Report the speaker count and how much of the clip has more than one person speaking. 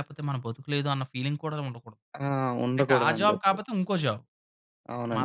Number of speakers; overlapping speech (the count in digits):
2, about 18%